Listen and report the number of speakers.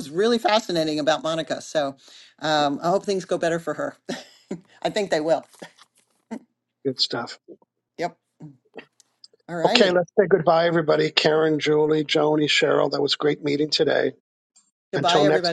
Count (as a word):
two